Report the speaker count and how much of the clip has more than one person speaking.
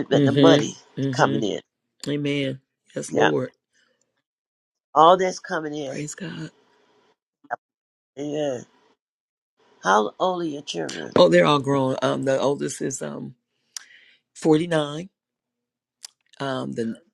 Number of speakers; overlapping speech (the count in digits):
2, about 7%